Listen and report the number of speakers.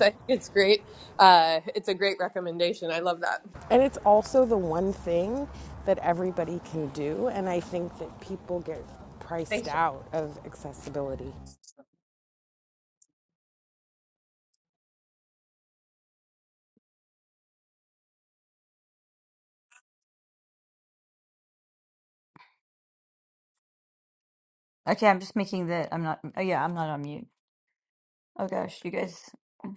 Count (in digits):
3